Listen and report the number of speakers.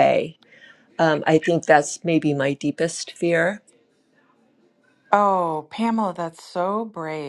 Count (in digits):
2